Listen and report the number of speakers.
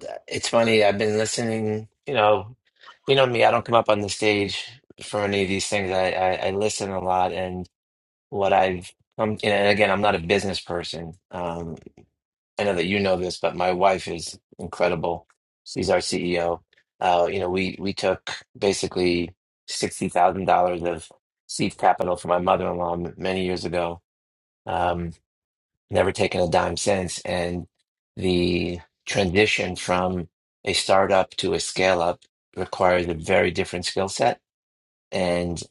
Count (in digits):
1